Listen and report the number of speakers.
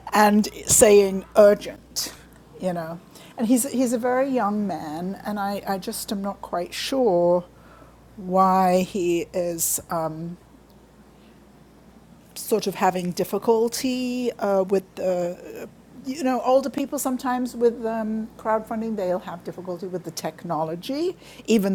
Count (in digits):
1